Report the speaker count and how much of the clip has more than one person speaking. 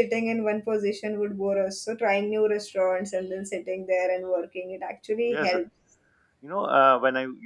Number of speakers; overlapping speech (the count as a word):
two, about 5%